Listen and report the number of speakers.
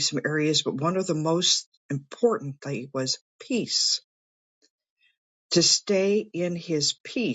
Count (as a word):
one